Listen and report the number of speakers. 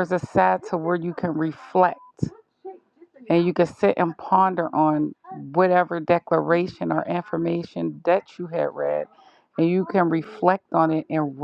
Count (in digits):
1